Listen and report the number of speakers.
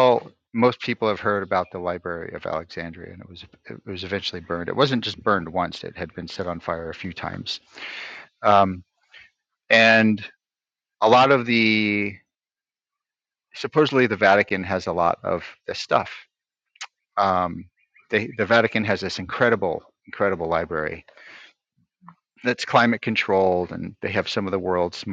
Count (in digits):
1